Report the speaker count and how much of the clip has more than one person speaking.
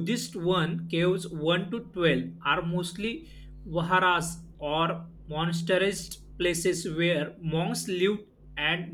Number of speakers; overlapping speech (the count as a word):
one, no overlap